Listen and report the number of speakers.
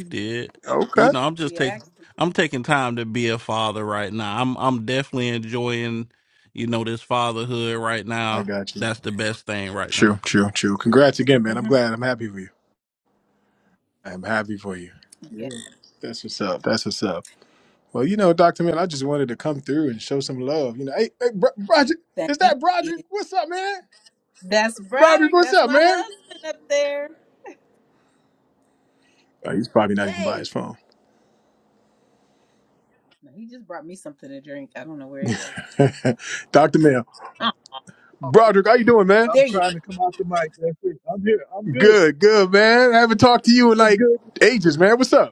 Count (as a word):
four